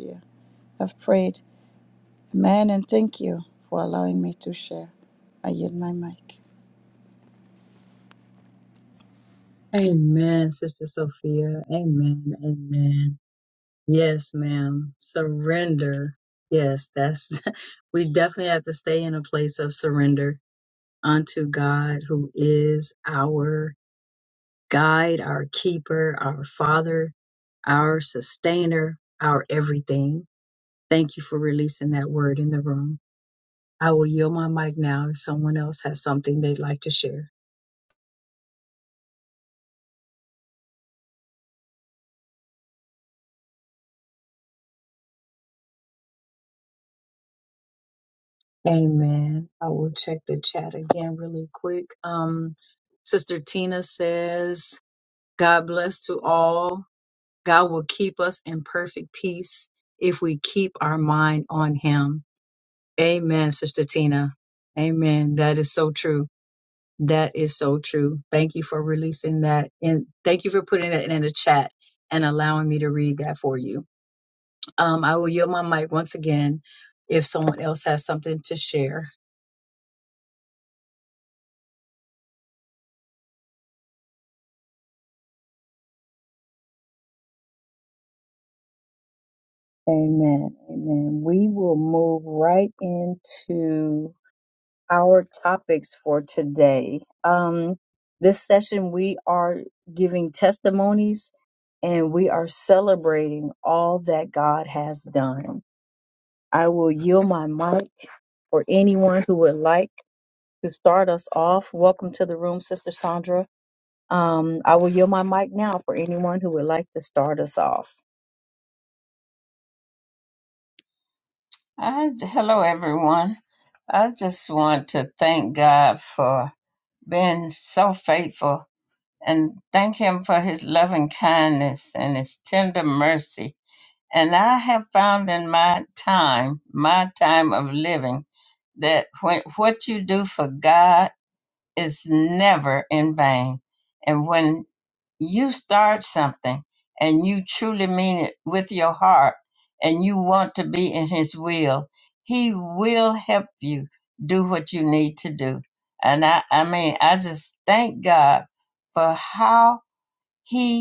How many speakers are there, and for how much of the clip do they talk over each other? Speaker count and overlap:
three, no overlap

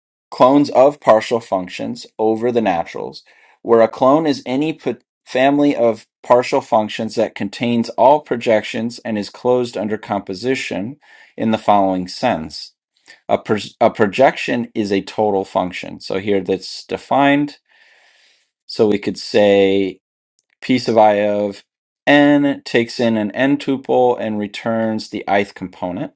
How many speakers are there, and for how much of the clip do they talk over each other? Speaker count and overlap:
one, no overlap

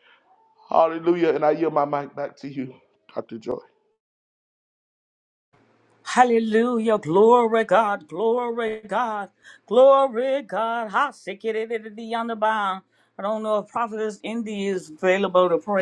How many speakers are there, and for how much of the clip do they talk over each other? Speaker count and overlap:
two, no overlap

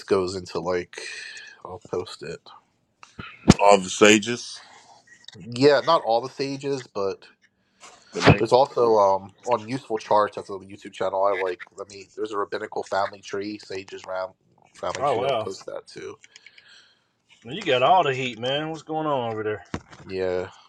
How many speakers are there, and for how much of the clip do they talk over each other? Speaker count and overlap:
three, about 3%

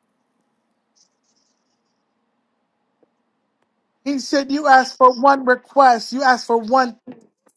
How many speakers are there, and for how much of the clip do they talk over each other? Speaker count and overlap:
one, no overlap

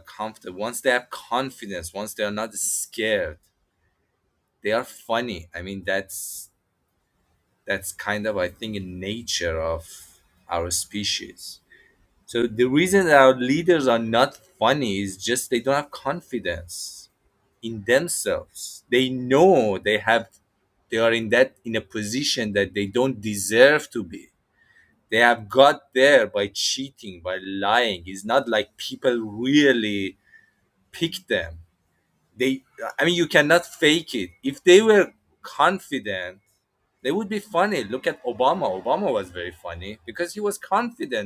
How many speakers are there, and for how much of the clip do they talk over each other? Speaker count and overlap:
one, no overlap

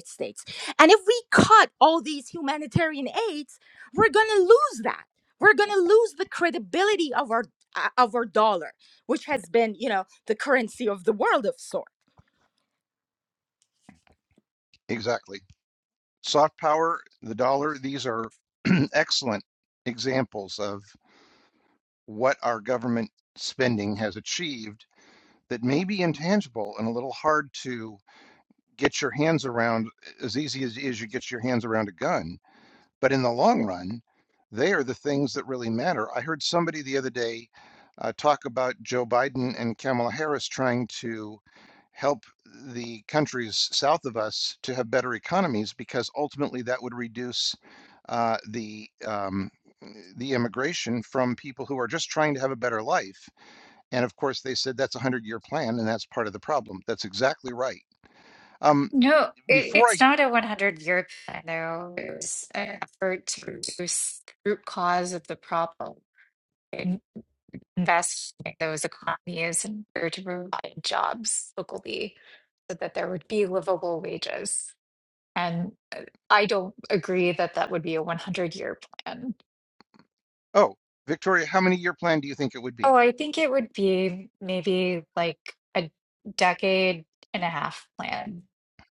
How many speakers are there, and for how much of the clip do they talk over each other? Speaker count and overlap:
three, about 1%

